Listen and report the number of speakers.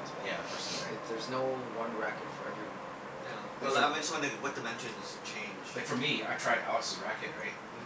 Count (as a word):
three